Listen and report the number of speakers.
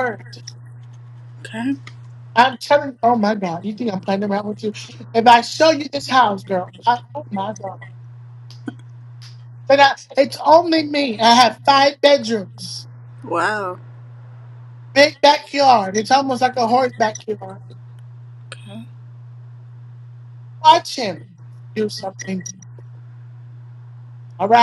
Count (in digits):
2